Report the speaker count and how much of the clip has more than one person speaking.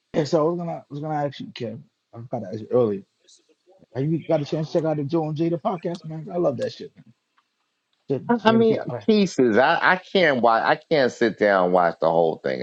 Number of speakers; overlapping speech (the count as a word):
two, about 6%